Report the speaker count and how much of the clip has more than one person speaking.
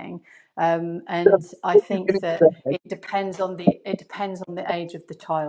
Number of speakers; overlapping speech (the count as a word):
one, no overlap